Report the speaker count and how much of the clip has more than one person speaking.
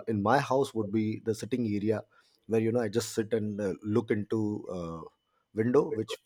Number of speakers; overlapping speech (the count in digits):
1, no overlap